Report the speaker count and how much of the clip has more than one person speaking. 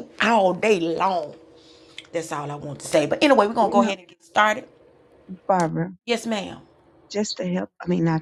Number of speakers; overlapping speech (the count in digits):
2, about 4%